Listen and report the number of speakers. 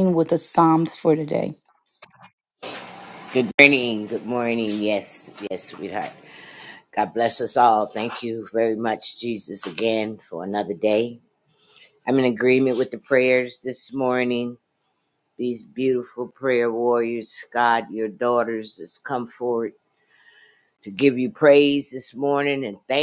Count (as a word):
two